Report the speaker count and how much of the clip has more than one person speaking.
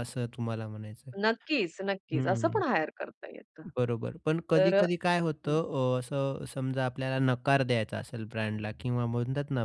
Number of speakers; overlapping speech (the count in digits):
2, about 8%